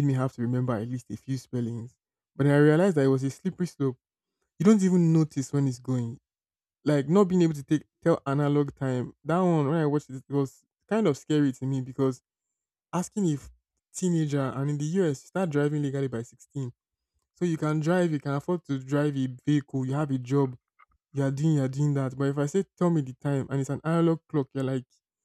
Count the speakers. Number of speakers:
1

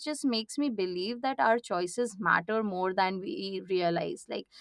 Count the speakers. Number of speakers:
1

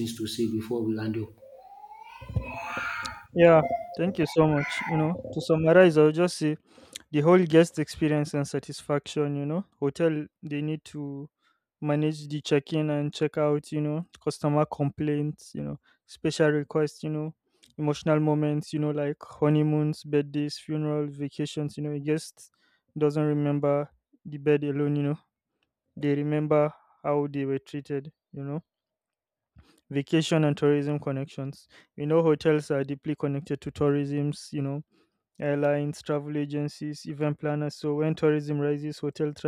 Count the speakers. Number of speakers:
2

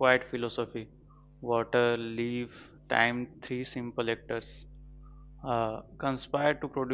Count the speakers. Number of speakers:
1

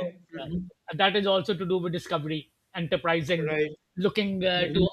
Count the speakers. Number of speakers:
2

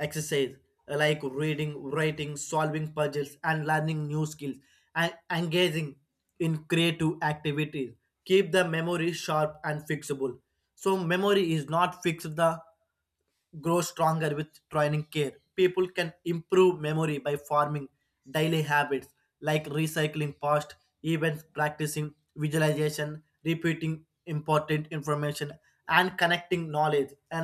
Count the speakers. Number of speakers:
1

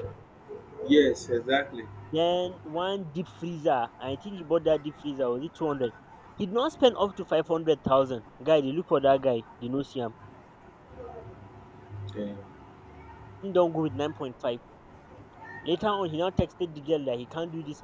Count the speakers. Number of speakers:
2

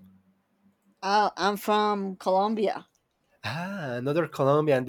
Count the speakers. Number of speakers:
2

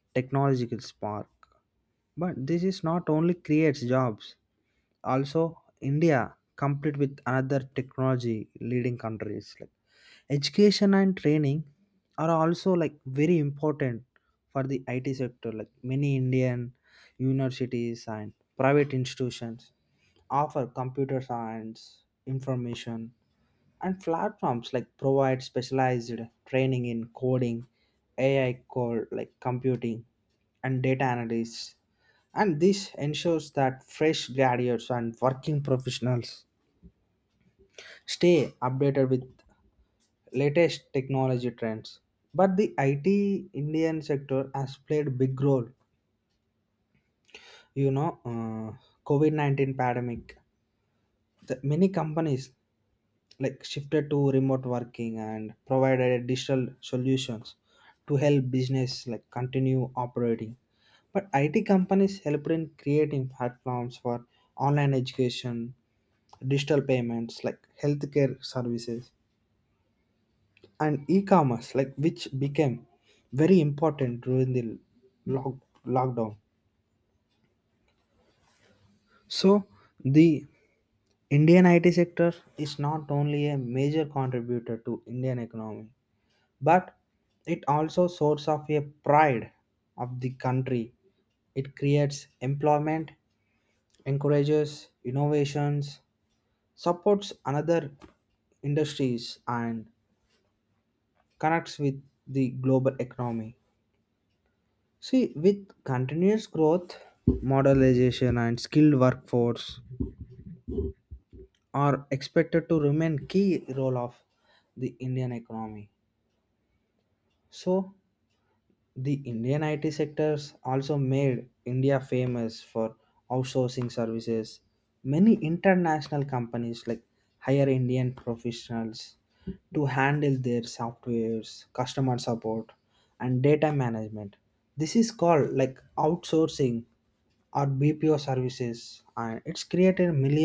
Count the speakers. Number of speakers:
1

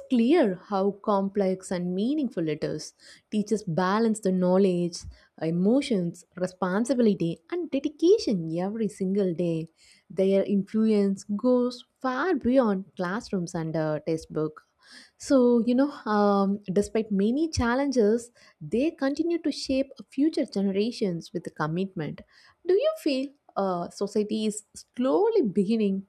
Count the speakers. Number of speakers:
1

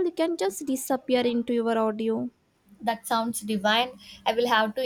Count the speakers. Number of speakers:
2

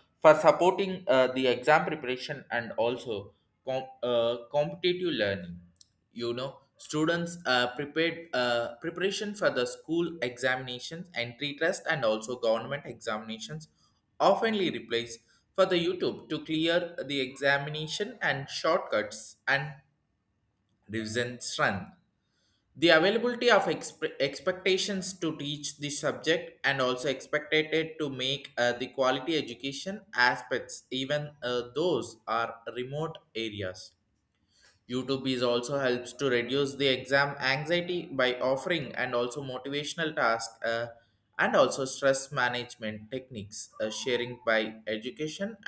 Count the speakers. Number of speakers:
1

